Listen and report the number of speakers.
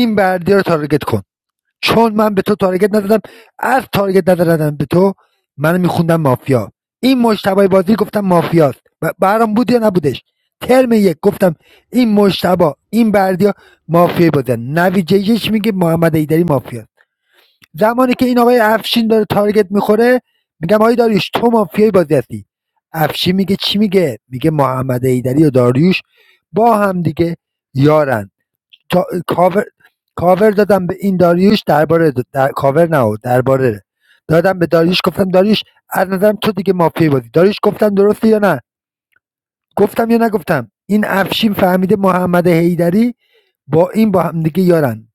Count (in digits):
1